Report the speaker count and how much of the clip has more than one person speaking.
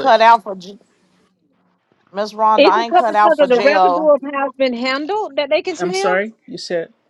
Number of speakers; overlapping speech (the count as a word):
three, about 29%